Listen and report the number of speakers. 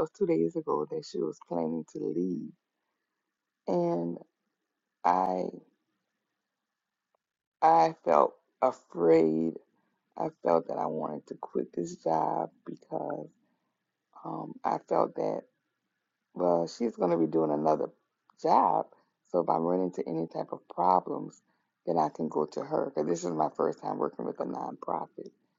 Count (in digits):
1